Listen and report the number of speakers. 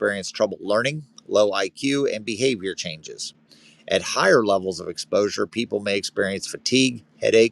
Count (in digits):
1